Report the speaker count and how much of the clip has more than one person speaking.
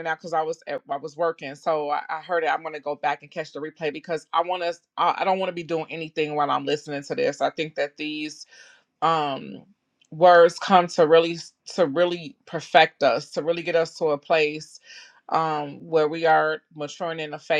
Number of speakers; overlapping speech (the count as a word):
one, no overlap